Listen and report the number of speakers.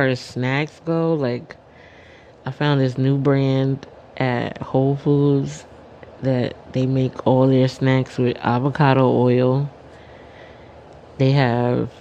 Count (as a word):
one